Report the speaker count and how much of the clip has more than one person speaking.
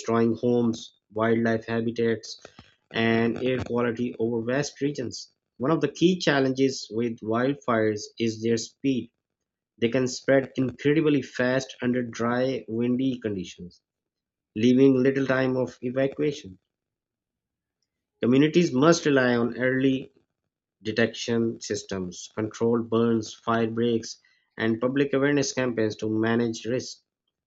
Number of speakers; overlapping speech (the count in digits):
1, no overlap